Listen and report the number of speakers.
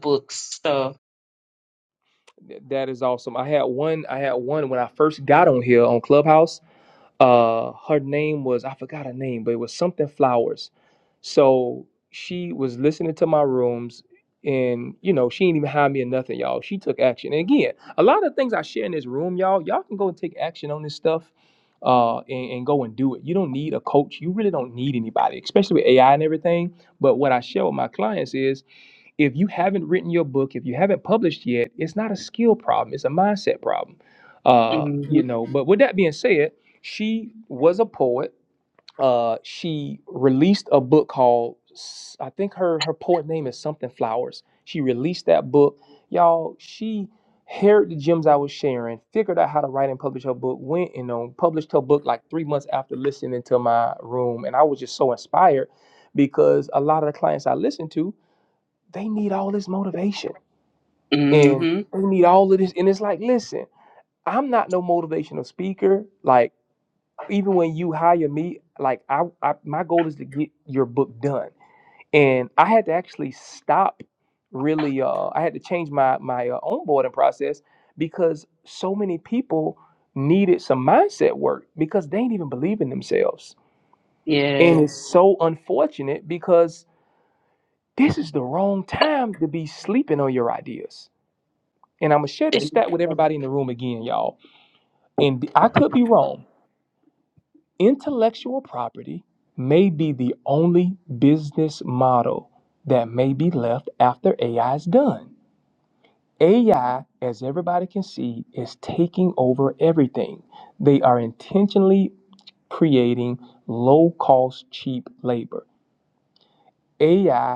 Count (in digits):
2